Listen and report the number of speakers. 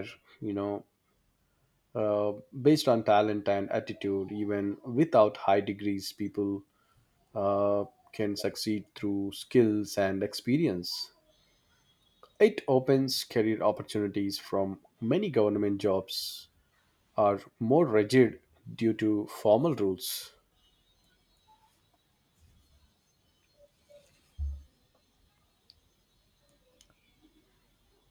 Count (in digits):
1